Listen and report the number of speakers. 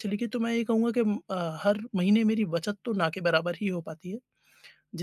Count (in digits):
1